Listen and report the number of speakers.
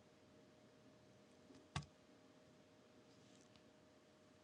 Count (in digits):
0